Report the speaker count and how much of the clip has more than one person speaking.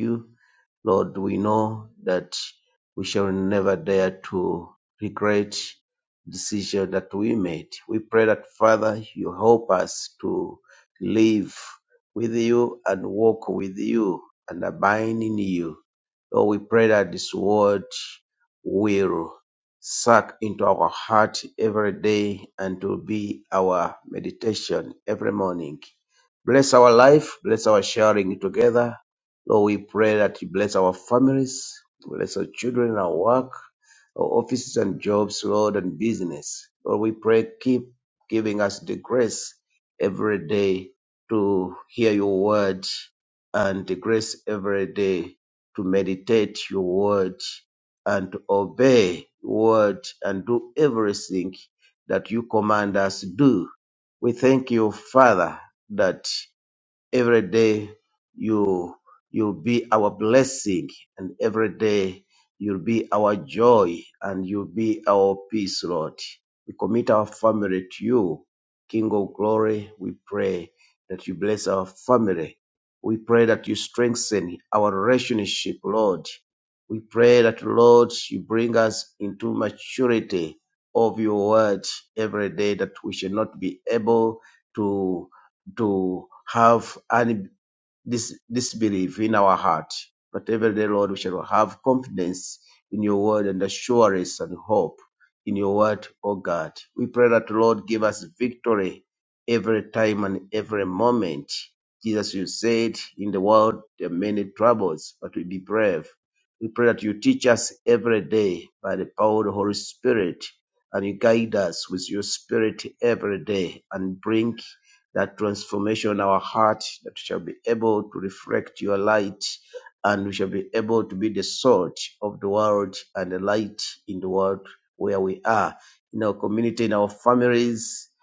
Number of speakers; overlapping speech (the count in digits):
1, no overlap